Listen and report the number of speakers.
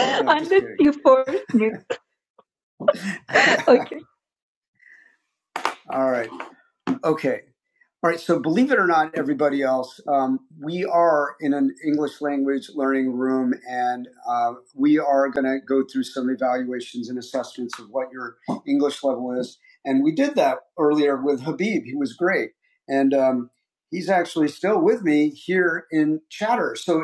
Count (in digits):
2